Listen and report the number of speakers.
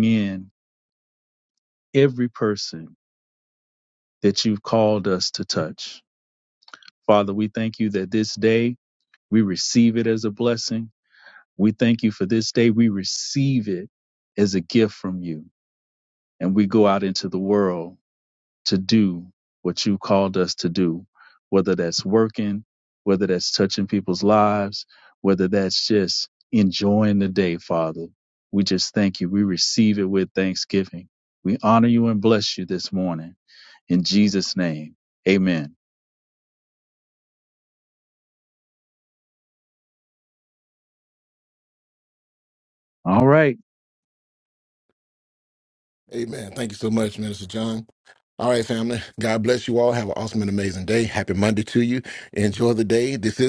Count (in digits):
2